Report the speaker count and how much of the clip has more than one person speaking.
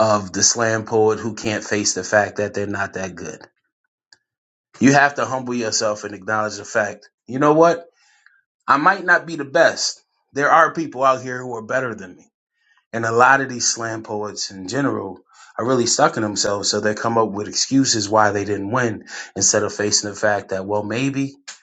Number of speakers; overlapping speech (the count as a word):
one, no overlap